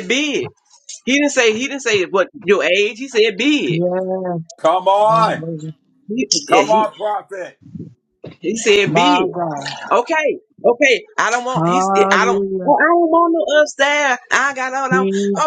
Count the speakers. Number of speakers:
3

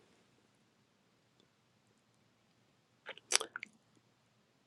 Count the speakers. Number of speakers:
0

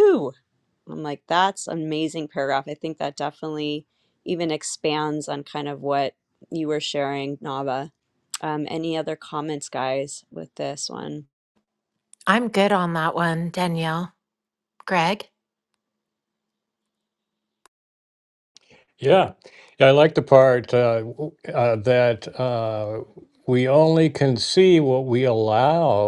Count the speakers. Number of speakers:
3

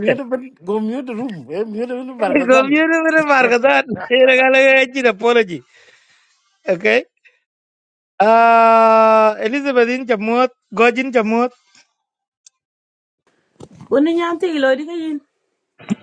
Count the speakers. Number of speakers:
3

